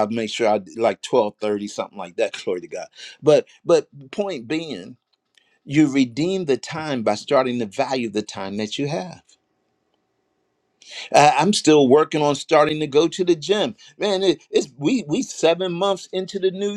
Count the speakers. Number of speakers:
1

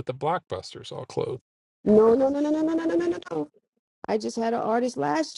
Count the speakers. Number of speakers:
2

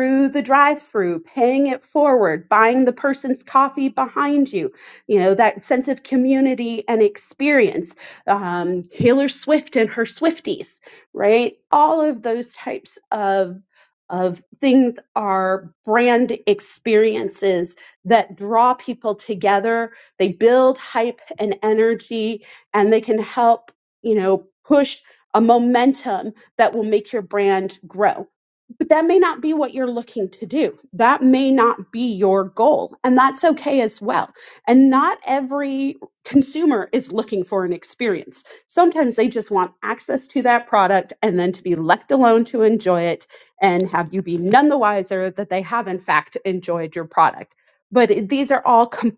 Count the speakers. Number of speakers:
1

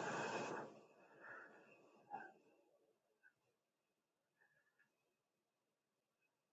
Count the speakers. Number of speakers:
0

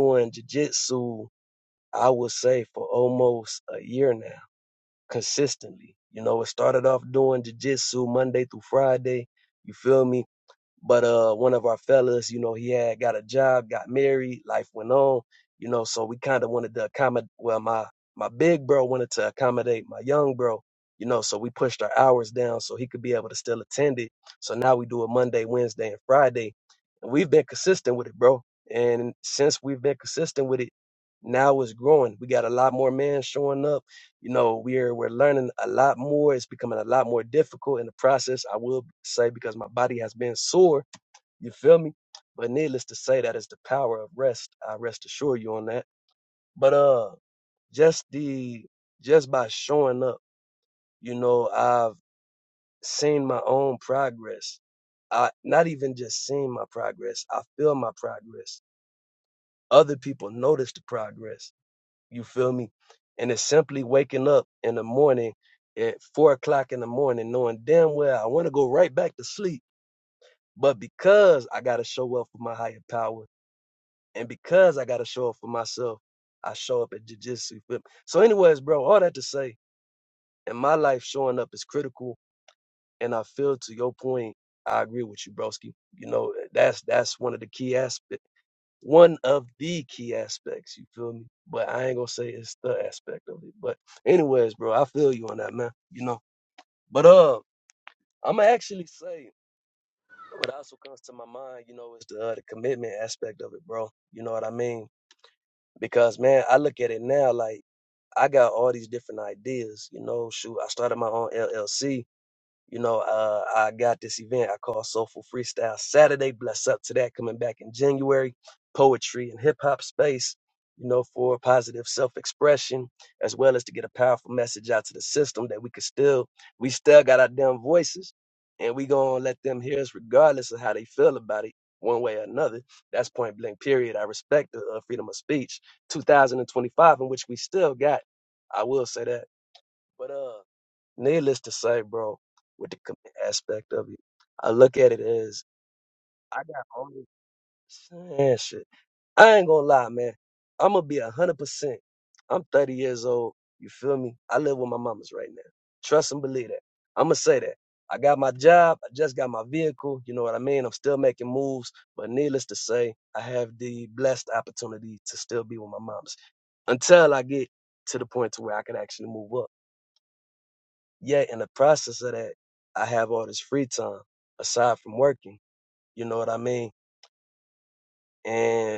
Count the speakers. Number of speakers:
1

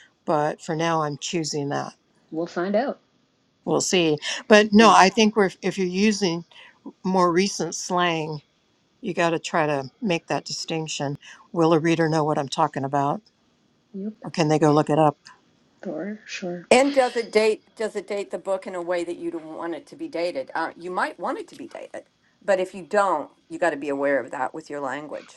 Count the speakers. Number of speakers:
3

